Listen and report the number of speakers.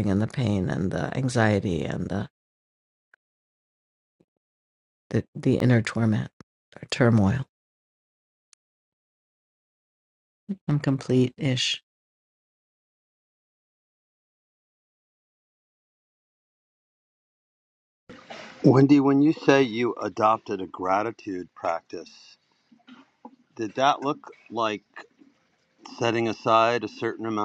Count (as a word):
two